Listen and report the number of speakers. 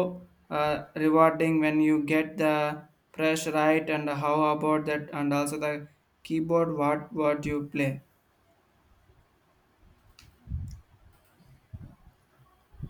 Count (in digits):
1